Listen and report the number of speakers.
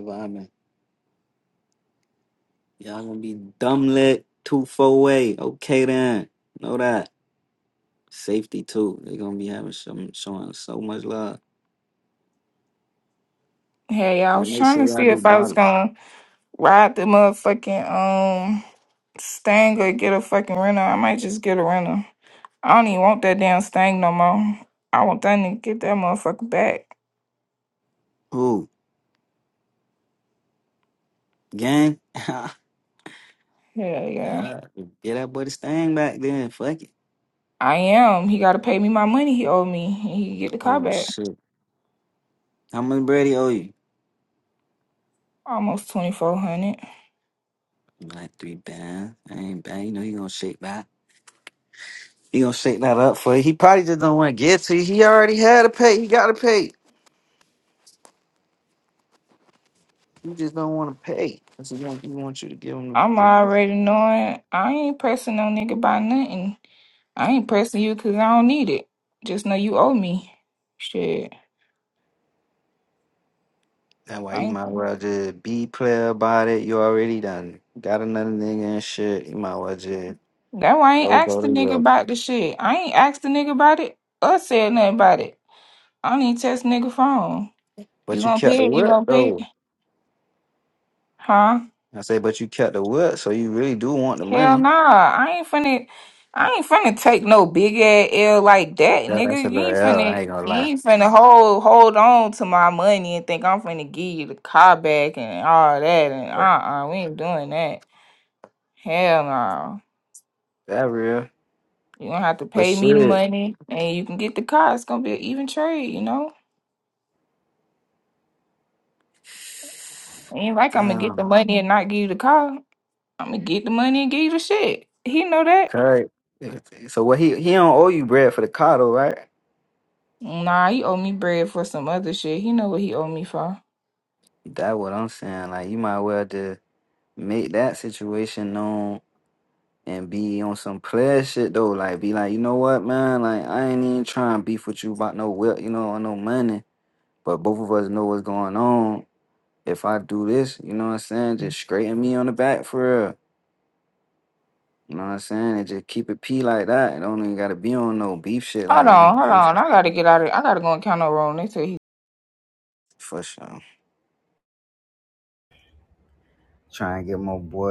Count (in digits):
2